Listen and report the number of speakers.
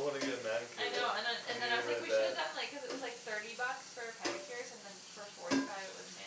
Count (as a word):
two